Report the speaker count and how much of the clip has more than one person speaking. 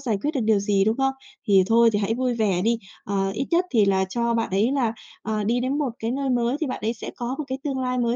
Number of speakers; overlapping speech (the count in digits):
1, no overlap